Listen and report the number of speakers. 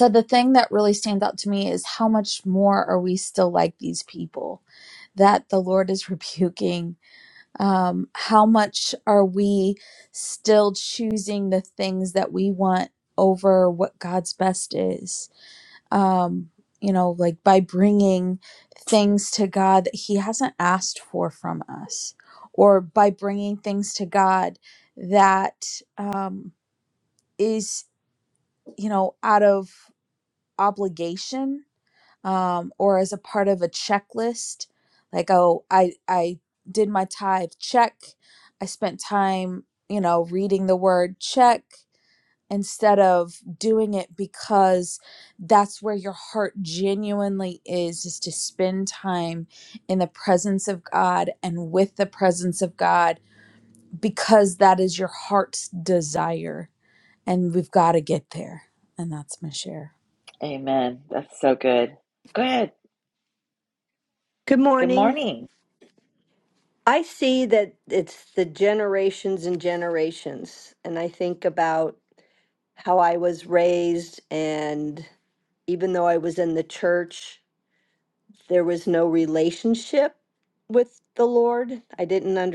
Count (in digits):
3